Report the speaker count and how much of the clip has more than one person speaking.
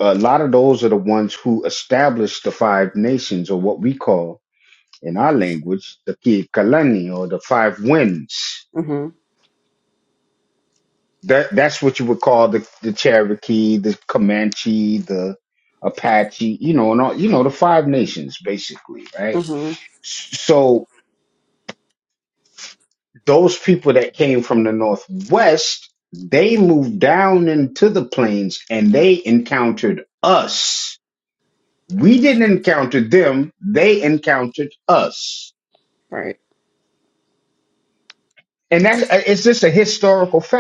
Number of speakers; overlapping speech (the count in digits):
2, under 1%